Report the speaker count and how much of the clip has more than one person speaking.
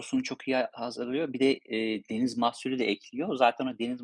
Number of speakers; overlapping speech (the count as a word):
one, no overlap